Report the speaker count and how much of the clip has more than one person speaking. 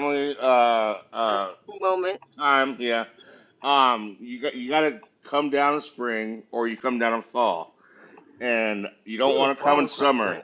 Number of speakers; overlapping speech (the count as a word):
two, about 12%